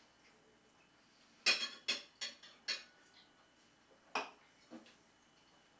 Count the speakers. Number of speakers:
0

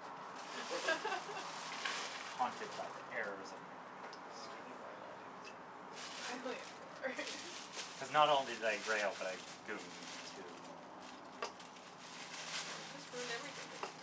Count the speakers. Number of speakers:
2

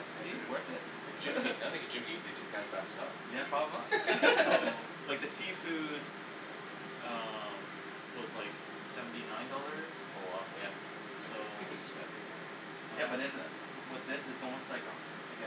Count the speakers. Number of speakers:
3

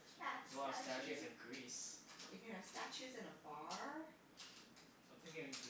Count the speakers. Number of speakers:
2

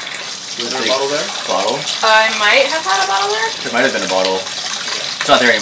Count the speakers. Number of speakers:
3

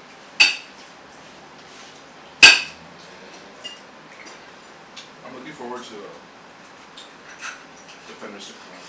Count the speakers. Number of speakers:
1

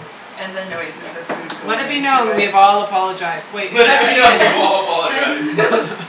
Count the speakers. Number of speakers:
3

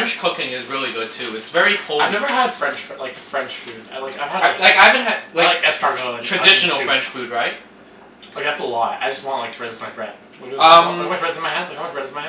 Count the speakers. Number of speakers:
2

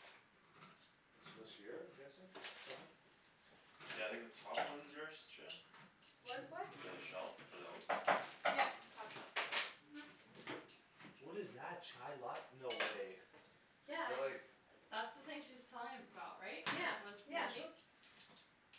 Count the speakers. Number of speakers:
4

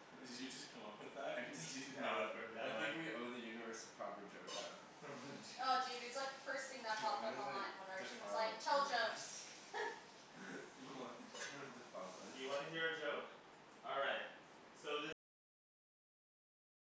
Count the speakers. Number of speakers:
4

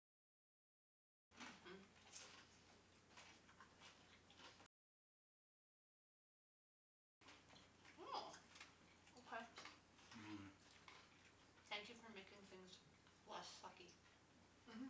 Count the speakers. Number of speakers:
2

